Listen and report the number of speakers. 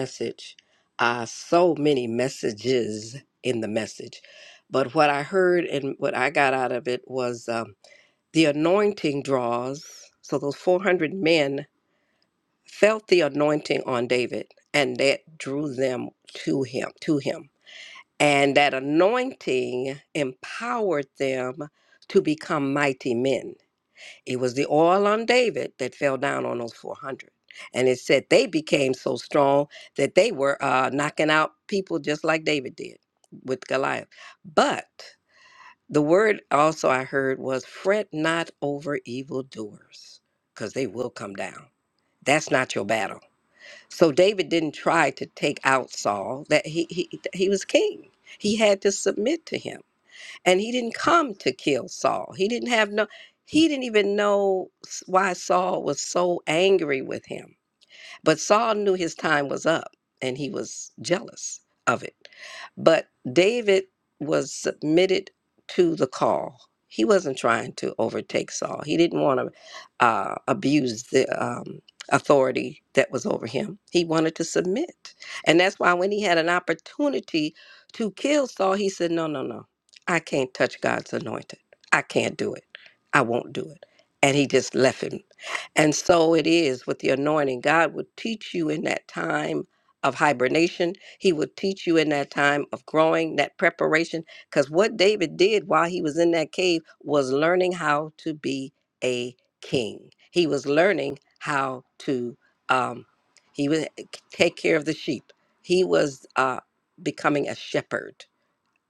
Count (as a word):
one